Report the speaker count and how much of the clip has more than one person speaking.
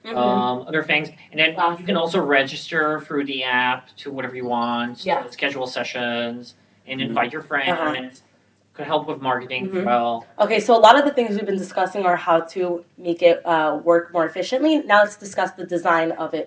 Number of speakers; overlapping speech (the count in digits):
2, about 12%